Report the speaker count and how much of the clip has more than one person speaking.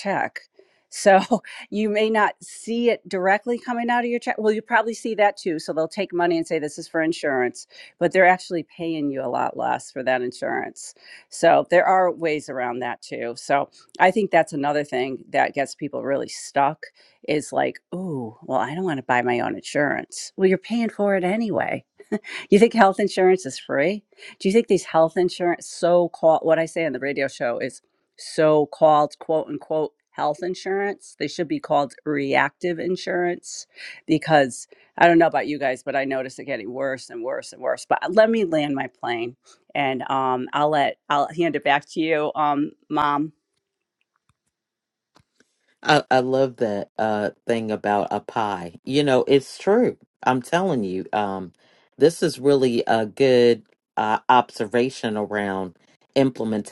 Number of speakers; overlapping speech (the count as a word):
two, no overlap